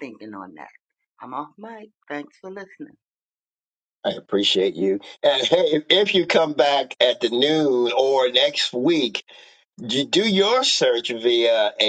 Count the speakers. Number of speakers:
two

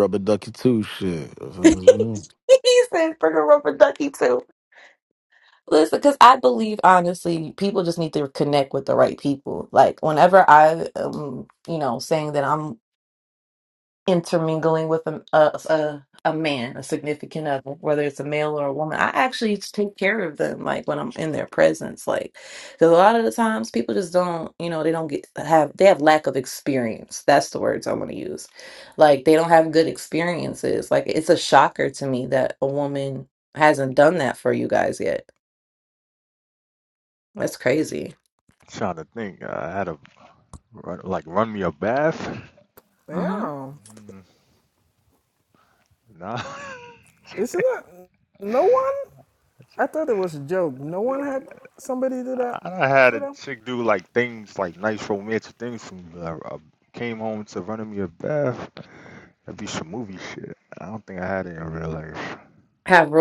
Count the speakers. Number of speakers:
four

